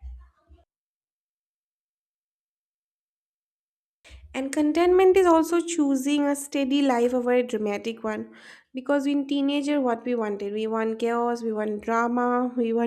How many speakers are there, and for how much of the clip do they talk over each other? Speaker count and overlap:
1, no overlap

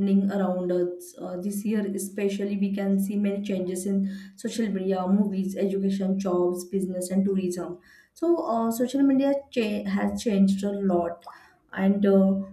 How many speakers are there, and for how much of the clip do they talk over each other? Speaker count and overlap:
1, no overlap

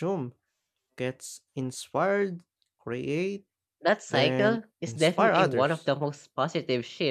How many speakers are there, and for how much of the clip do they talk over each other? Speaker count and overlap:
2, about 23%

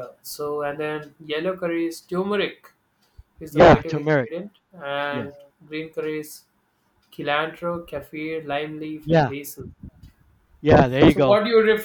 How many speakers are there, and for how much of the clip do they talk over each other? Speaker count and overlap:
2, about 11%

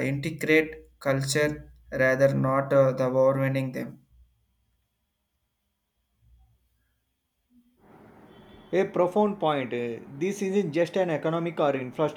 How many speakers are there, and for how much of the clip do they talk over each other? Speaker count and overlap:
2, no overlap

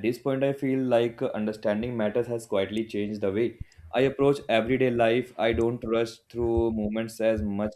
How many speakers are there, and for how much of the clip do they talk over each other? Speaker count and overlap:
1, no overlap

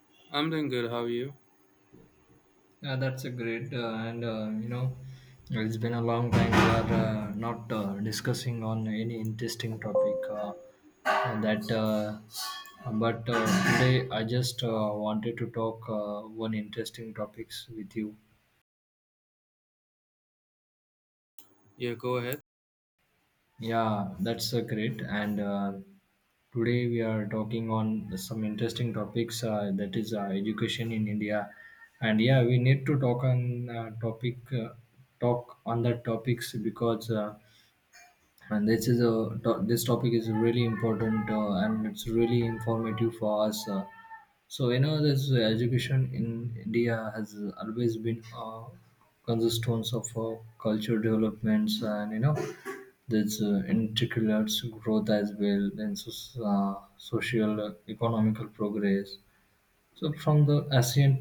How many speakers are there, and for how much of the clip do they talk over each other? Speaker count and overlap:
2, no overlap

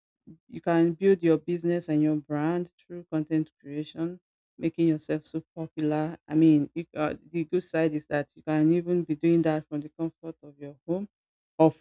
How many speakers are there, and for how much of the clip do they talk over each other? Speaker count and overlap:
1, no overlap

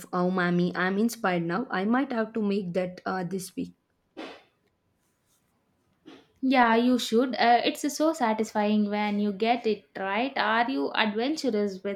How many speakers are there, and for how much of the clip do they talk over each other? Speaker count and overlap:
2, no overlap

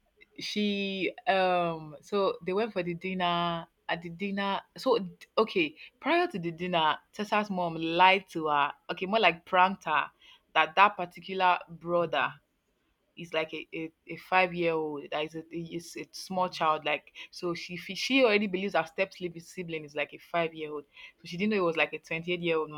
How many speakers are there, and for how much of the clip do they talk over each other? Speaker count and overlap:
1, no overlap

